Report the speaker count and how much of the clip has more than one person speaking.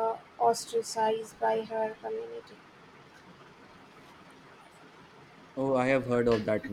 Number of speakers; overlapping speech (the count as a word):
two, no overlap